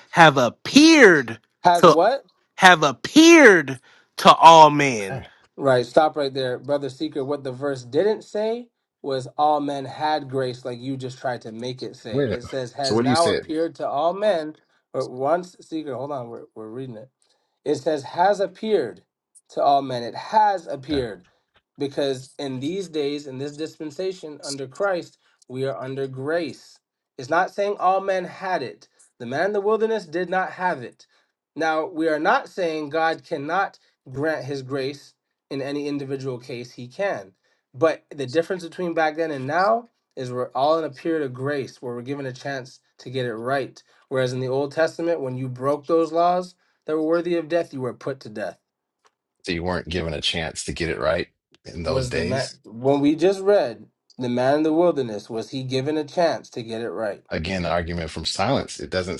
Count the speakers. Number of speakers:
three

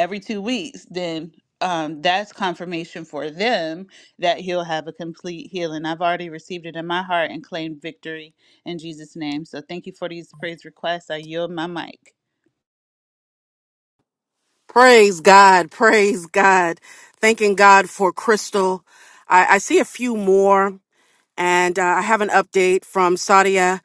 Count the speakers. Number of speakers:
two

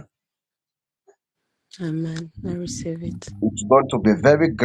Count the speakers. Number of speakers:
two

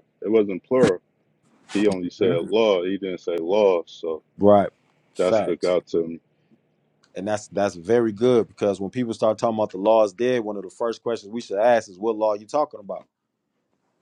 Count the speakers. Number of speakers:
two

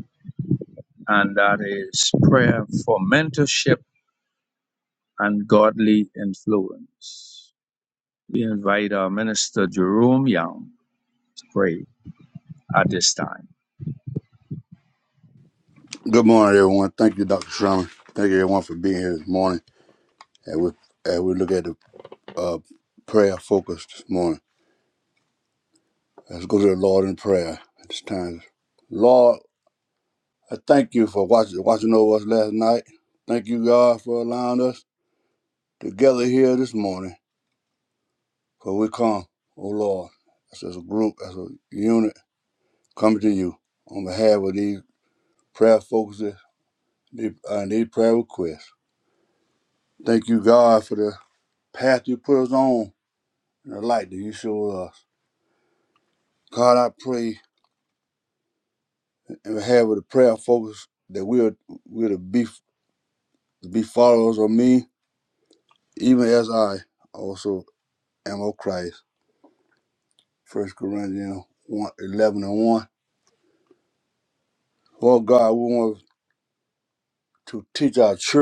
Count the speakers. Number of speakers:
two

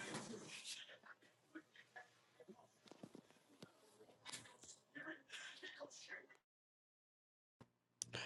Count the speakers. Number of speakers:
zero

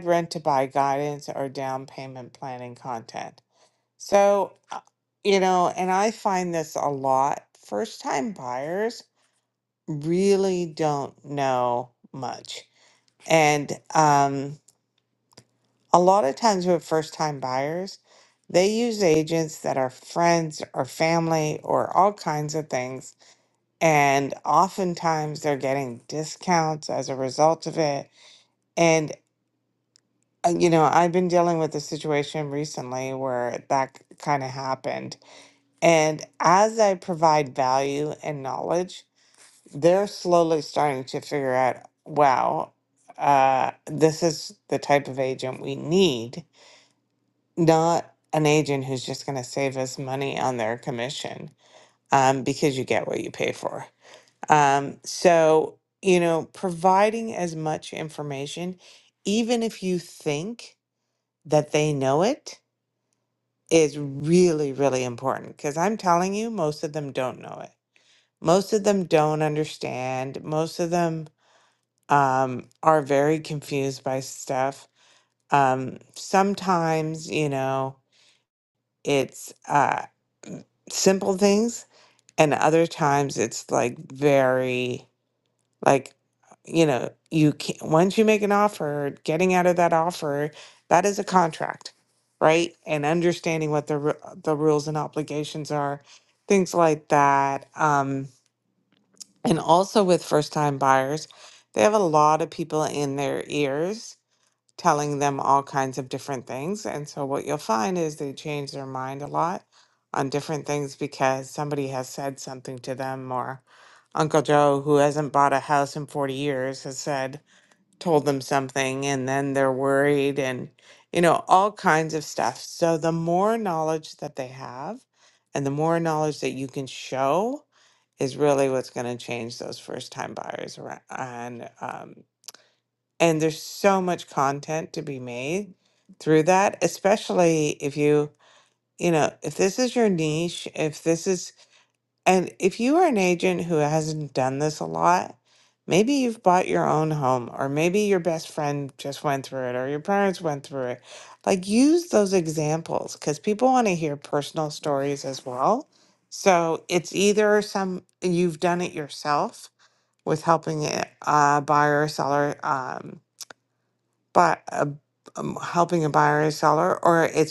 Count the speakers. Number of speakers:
one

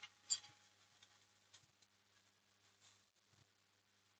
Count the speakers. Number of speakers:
zero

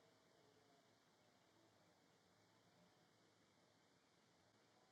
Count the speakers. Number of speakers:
zero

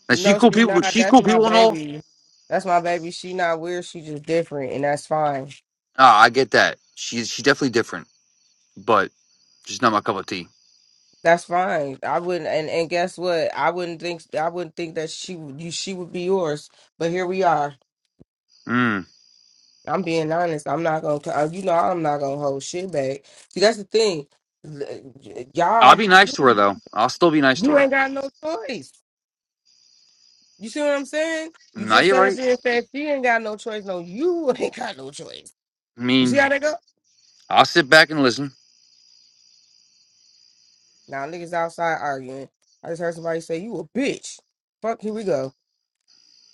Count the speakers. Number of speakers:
two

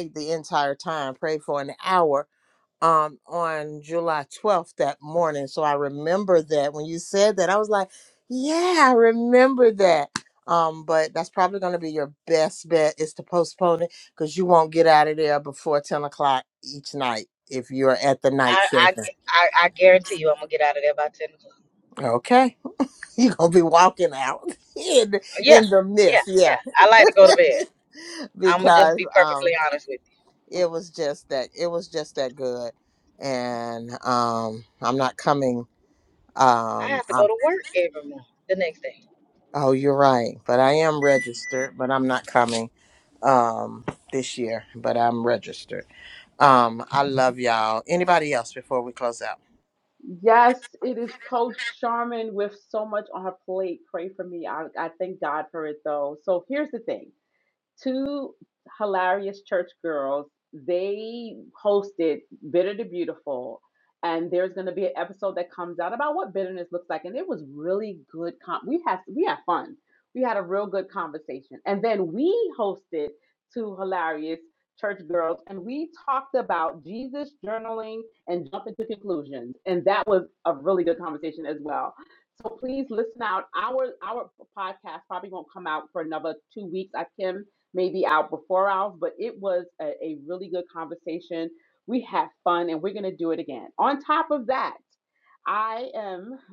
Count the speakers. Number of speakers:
three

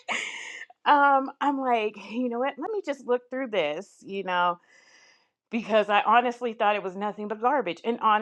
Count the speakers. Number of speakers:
one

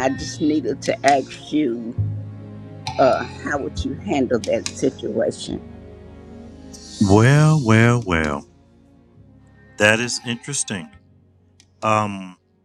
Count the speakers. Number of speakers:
two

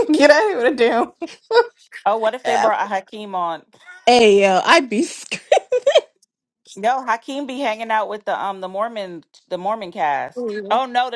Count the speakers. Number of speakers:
three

